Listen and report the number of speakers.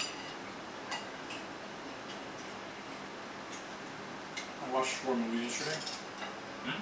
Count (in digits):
1